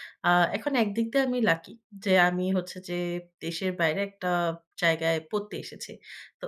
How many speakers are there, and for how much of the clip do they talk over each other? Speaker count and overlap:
1, no overlap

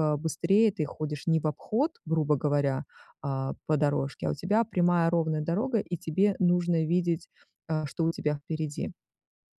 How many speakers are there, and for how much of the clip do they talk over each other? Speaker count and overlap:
1, no overlap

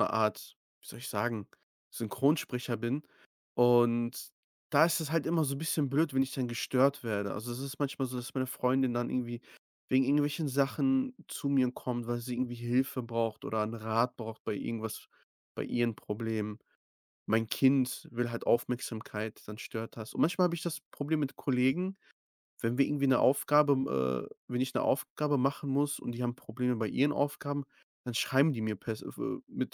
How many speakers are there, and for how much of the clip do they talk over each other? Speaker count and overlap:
1, no overlap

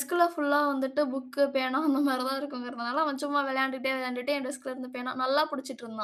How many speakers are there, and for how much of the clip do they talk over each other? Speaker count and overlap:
1, no overlap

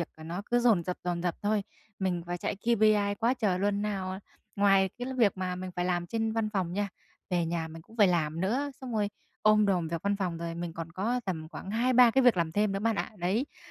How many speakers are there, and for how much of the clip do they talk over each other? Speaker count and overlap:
1, no overlap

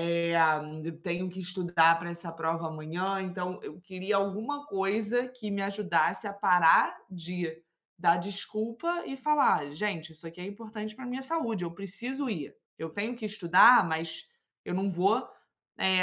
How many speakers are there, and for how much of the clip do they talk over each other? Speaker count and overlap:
1, no overlap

